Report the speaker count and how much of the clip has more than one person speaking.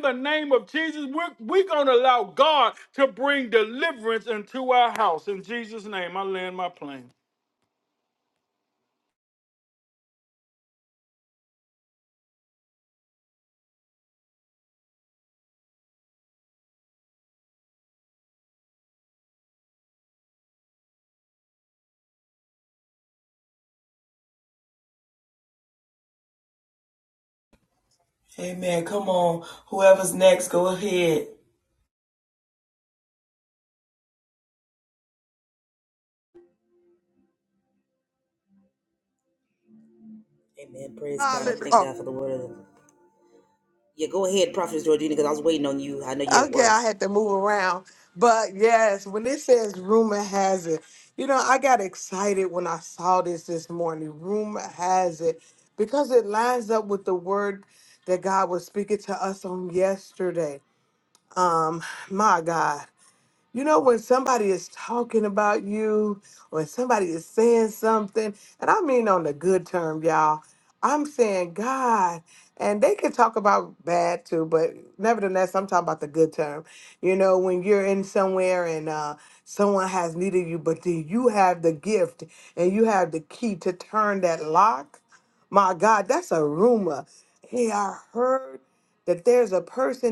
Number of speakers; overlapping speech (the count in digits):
4, about 1%